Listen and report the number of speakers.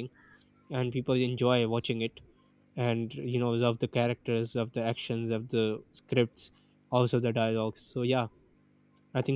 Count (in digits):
1